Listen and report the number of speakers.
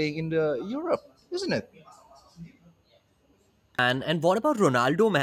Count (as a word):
two